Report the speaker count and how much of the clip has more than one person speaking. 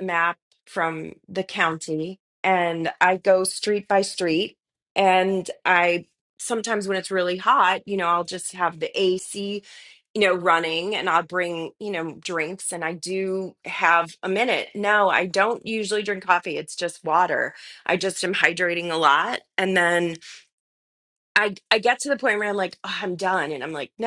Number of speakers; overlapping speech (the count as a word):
one, no overlap